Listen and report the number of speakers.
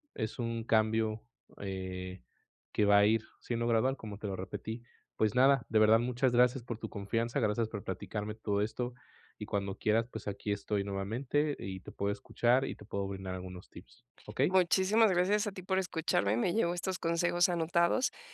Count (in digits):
2